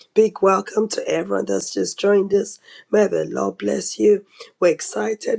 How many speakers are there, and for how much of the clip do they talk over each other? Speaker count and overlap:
1, no overlap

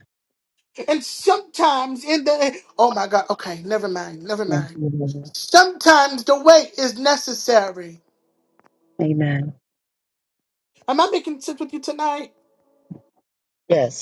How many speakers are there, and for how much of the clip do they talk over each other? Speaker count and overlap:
2, about 1%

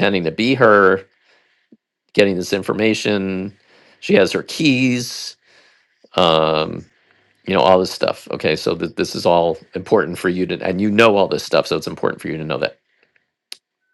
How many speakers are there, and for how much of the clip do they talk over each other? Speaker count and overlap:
1, no overlap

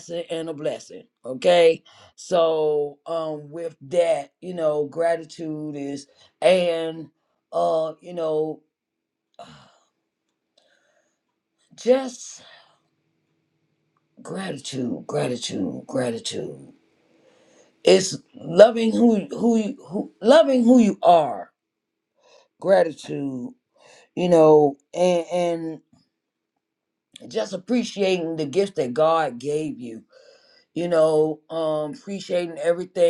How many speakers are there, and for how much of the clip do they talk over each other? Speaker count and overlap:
1, no overlap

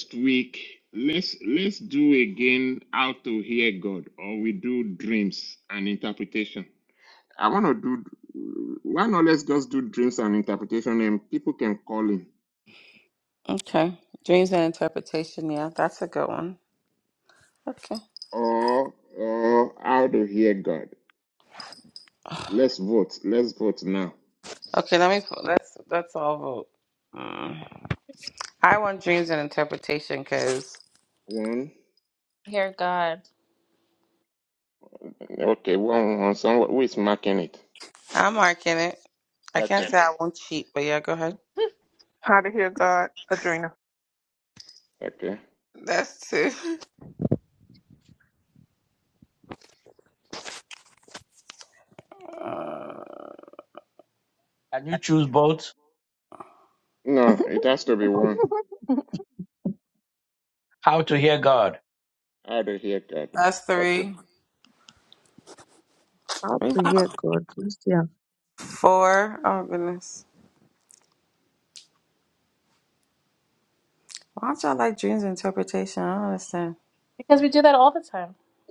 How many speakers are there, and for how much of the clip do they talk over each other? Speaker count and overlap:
6, about 1%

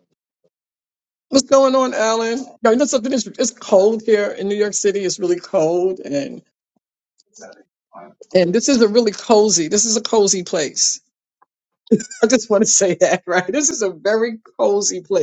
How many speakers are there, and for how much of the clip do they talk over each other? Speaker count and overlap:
1, no overlap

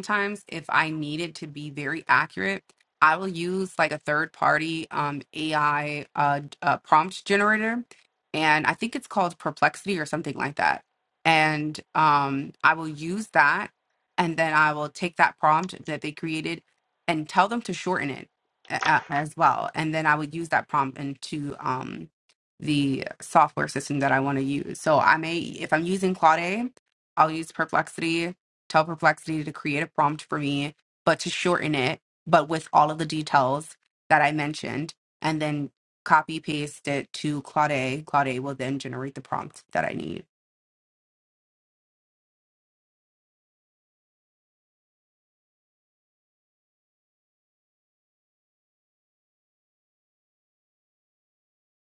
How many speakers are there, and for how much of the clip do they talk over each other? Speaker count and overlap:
1, no overlap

